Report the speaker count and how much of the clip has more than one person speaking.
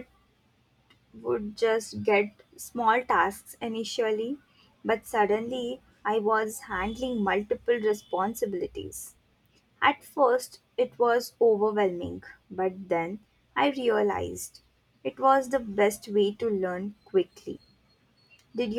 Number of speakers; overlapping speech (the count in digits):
1, no overlap